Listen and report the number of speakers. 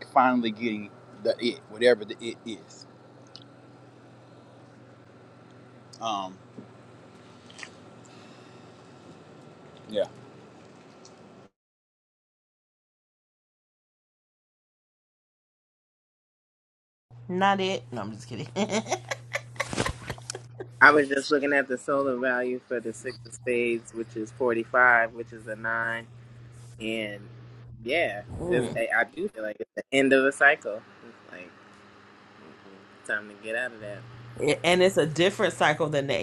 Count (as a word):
three